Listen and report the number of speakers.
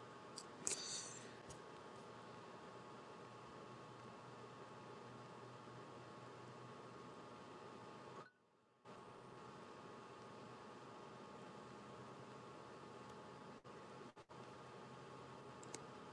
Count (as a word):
zero